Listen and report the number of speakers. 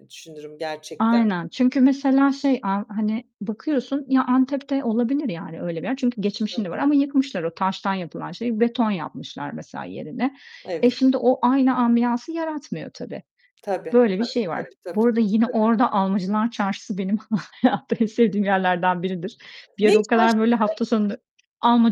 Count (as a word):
two